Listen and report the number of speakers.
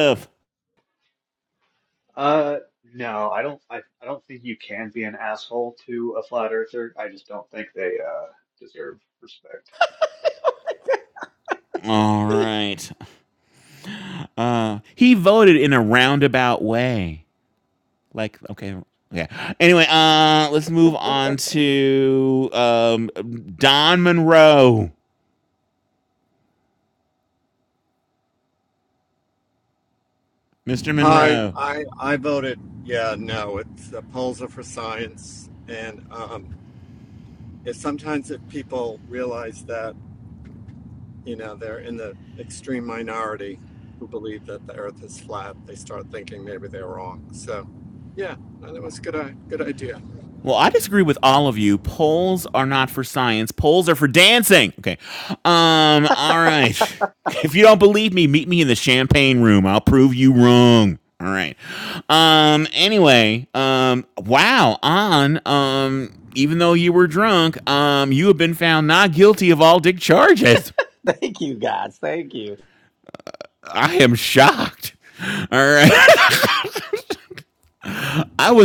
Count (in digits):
4